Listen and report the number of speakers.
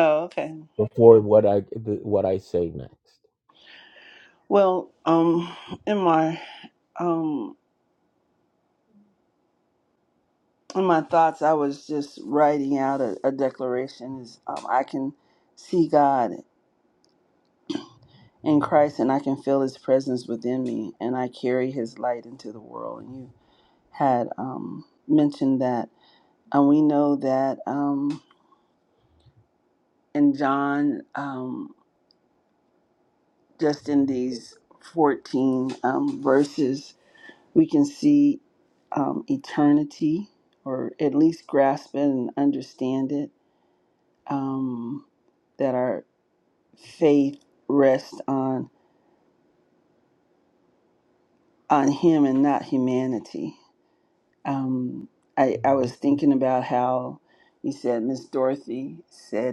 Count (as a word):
two